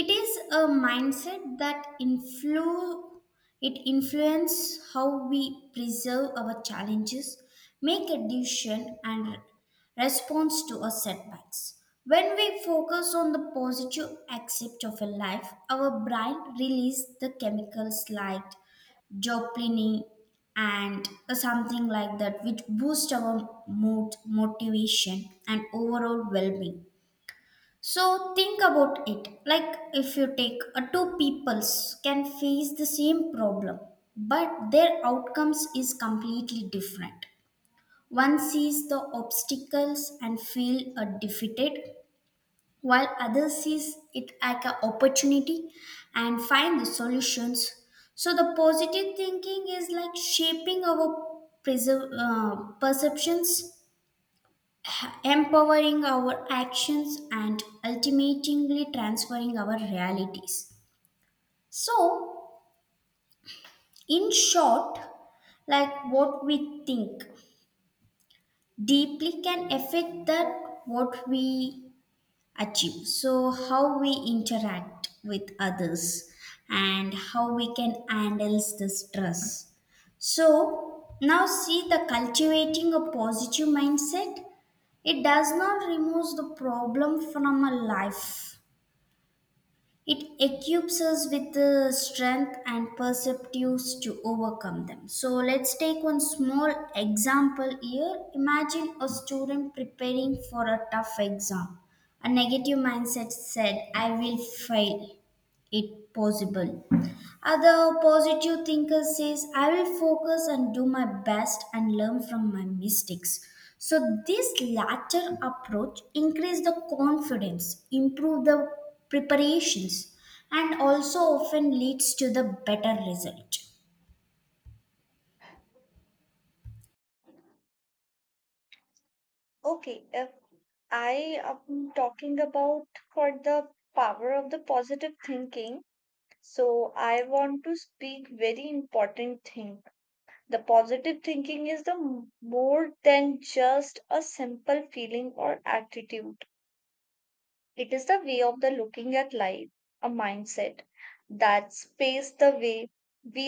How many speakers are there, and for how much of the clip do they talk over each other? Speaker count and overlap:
2, no overlap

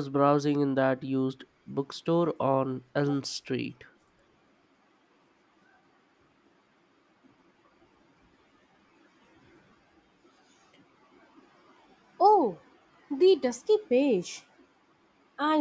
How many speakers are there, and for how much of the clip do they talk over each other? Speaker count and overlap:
2, no overlap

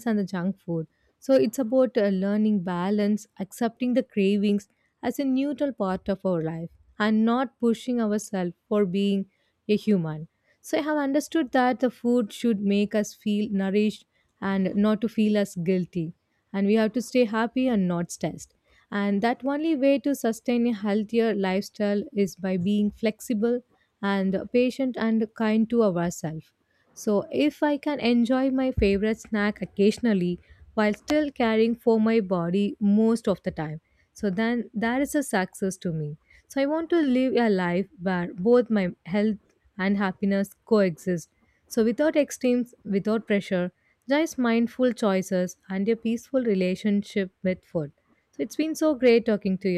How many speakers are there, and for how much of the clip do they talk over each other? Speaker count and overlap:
1, no overlap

